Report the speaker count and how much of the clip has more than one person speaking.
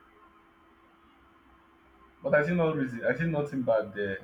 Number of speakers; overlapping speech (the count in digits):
1, no overlap